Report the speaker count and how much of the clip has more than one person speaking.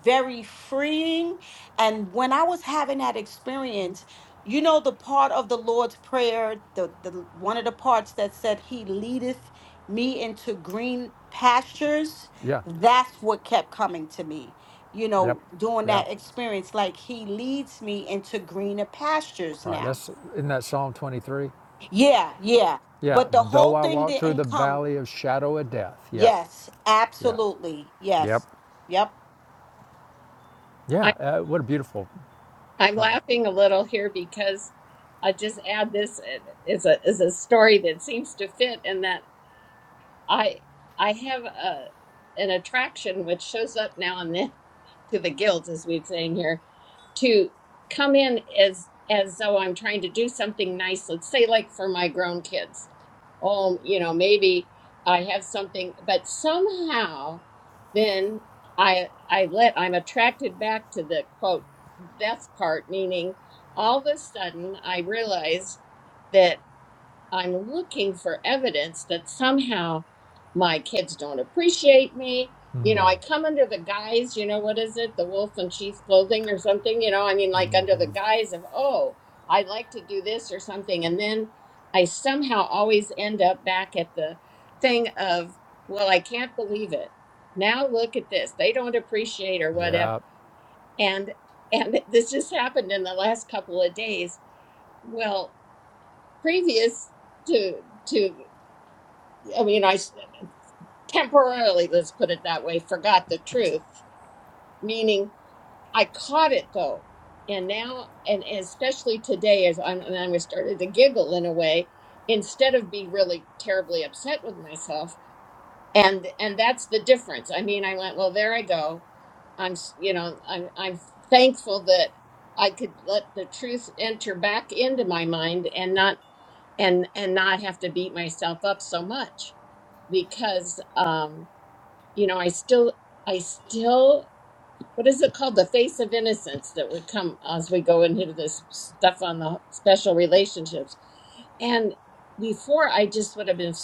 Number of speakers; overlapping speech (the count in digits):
3, about 2%